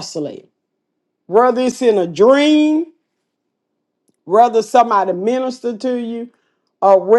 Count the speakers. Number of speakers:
1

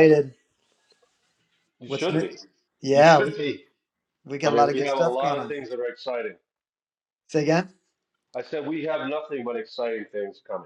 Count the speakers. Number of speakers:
2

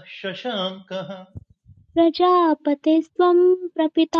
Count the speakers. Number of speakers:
2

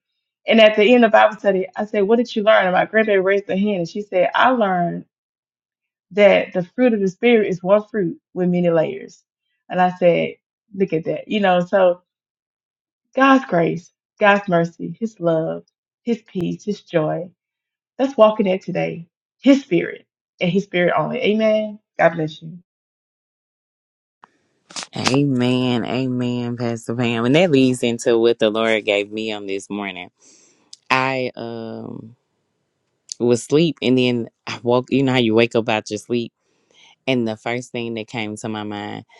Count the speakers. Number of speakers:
2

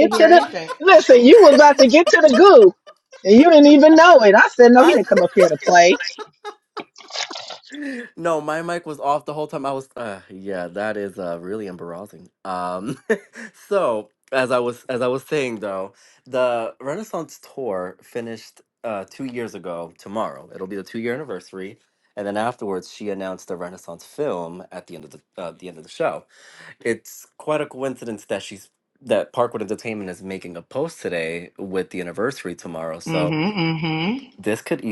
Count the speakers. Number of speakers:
3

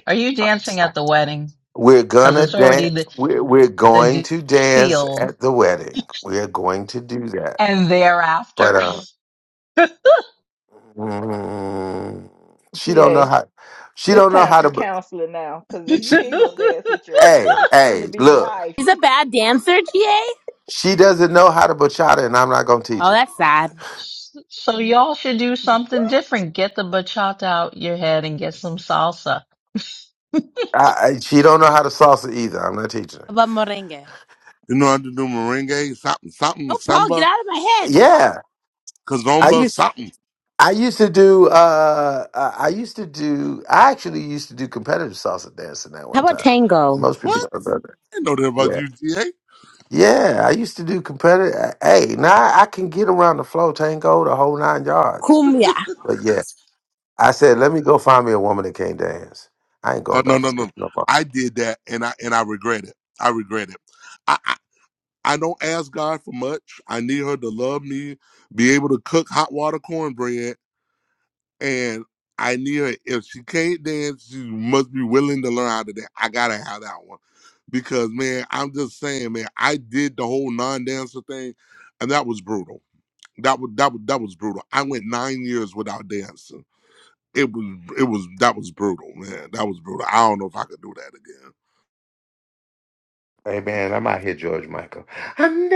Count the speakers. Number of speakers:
5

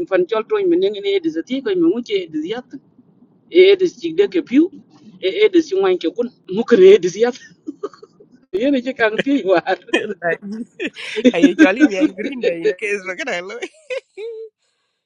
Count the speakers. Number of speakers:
2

